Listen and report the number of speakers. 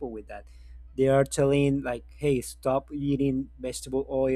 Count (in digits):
1